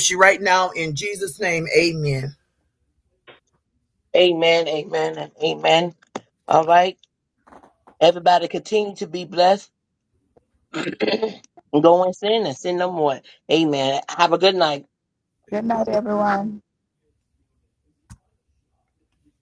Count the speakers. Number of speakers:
3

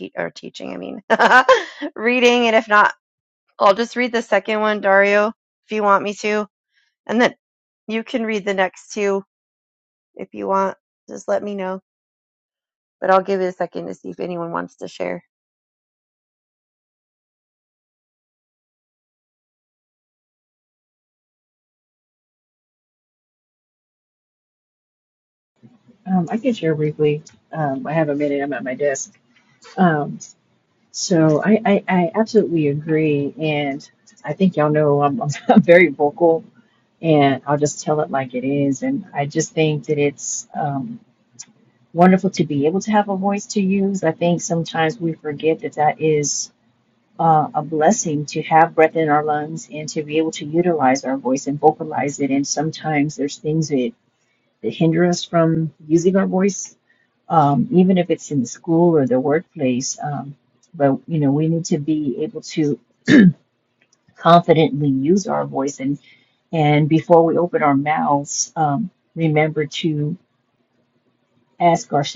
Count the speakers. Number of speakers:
2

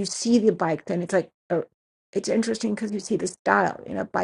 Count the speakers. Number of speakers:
1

